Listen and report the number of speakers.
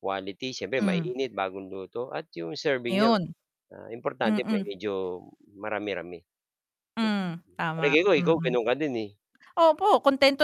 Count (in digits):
2